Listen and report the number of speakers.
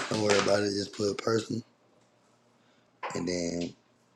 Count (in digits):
1